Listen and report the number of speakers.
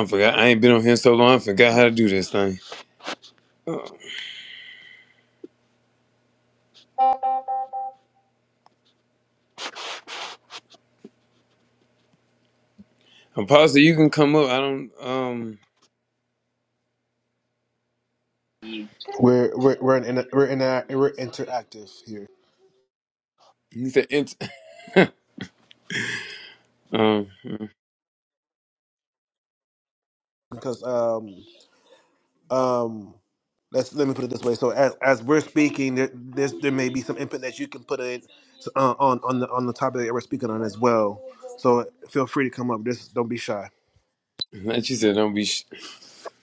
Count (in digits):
2